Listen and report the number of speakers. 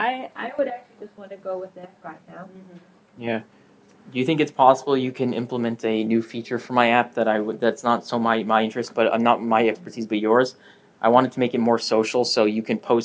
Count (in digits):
2